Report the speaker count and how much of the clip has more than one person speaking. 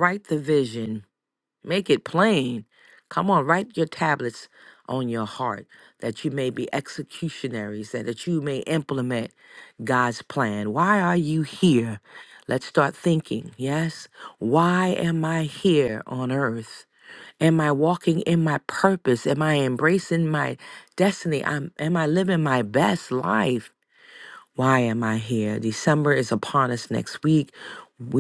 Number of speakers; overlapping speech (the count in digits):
1, no overlap